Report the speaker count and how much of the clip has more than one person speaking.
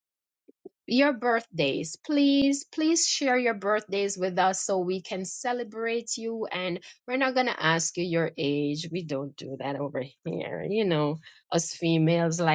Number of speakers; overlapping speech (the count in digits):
1, no overlap